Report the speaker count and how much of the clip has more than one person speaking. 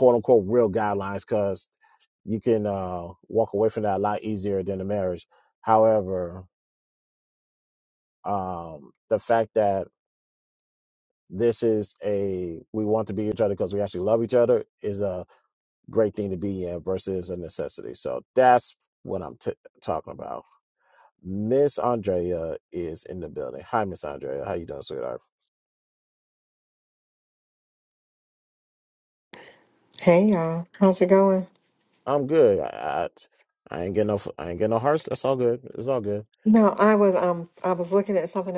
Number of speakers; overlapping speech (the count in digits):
2, no overlap